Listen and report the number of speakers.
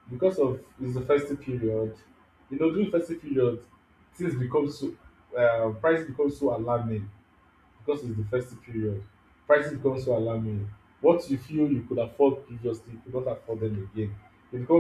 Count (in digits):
1